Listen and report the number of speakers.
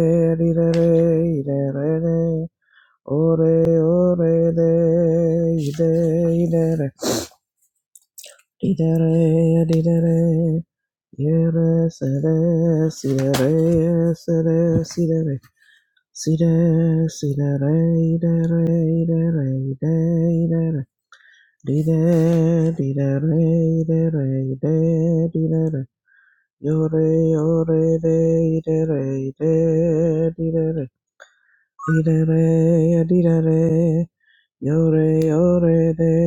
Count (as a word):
one